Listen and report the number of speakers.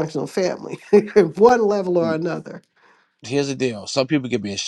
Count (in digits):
2